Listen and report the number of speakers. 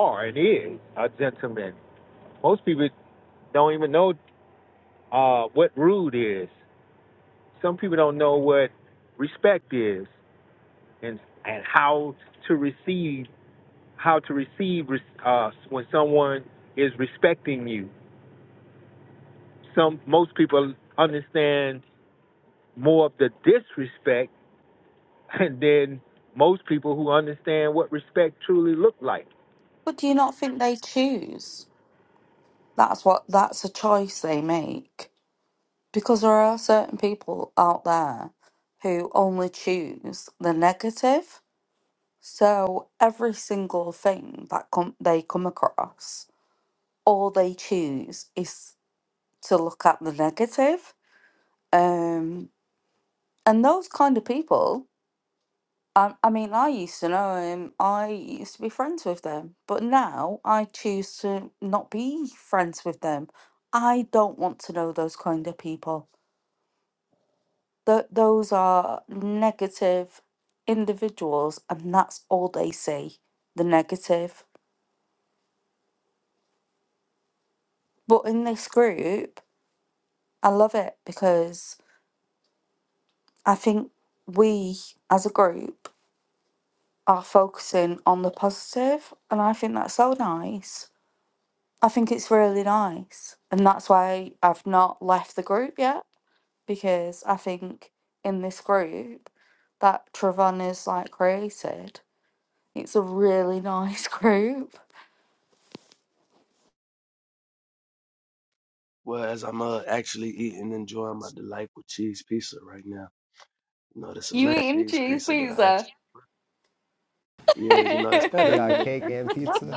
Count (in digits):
4